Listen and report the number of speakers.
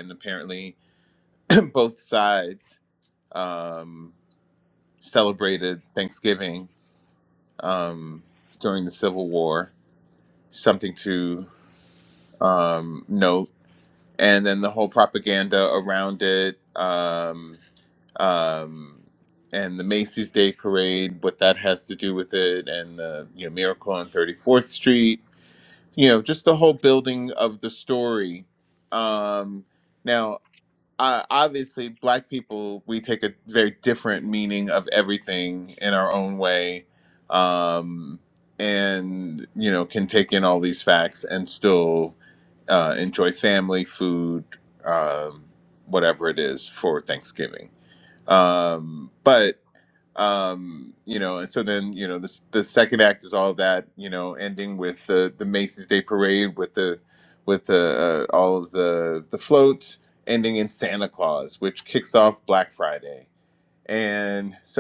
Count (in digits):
1